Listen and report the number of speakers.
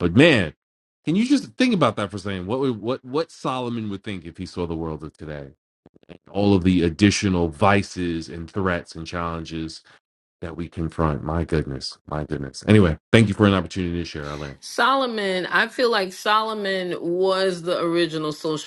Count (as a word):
two